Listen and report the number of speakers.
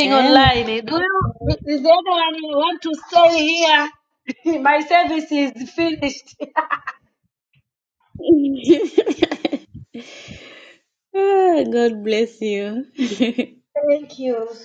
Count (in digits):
2